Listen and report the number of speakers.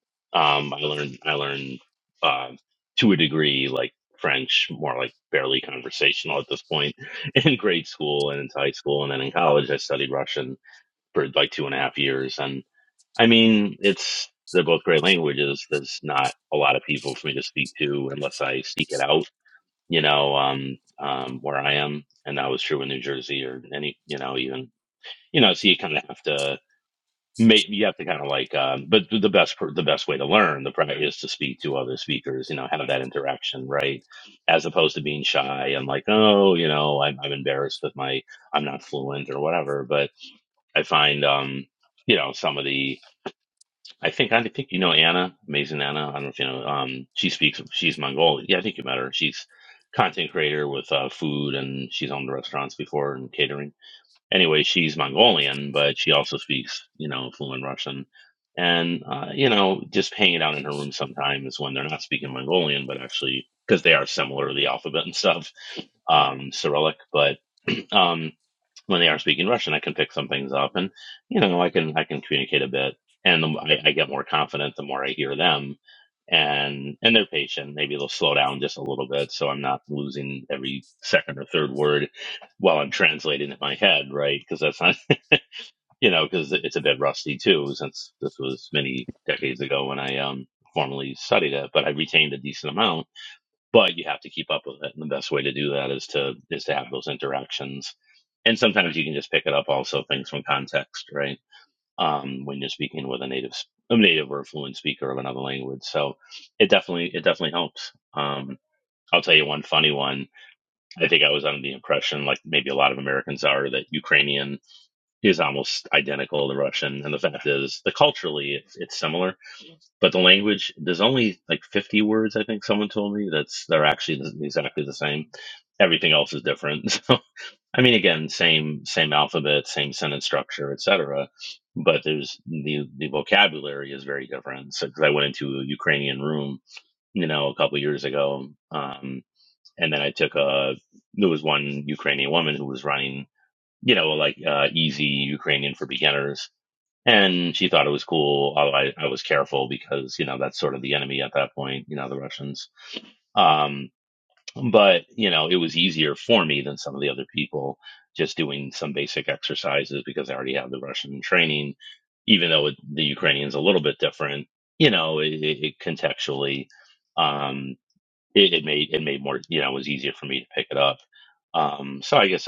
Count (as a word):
one